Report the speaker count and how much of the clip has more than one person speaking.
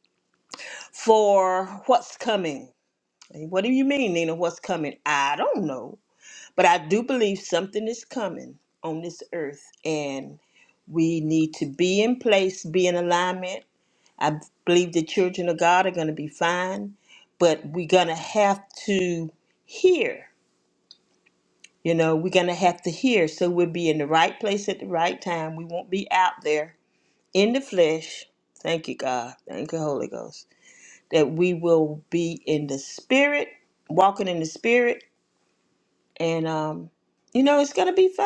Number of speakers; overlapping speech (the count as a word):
one, no overlap